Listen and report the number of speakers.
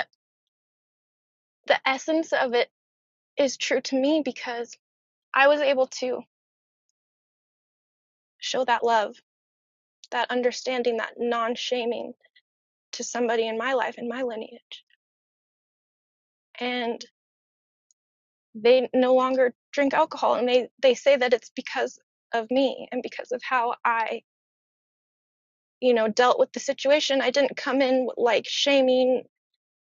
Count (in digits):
1